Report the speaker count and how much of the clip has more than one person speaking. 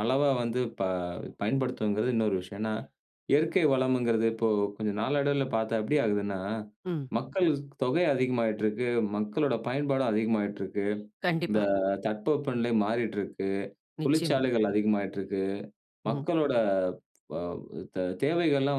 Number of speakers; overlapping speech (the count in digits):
2, about 4%